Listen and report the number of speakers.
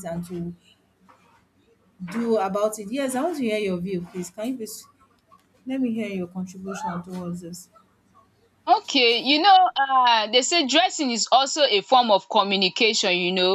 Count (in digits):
2